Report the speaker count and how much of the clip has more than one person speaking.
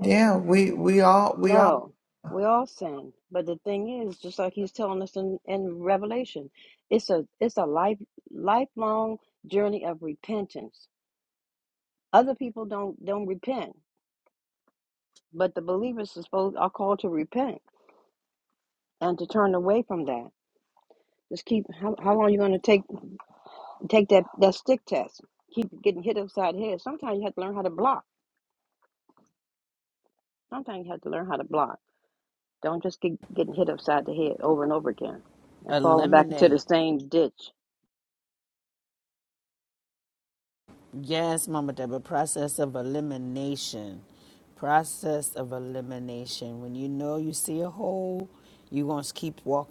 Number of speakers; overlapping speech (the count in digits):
3, about 3%